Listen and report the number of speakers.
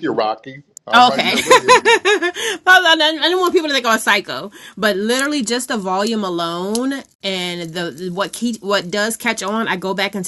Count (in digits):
2